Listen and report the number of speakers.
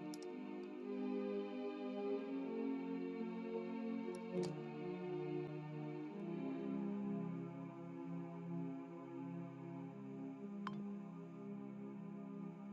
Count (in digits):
0